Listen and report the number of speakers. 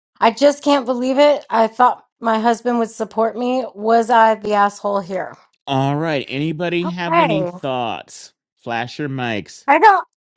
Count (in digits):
2